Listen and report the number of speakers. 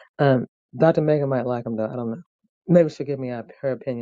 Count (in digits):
1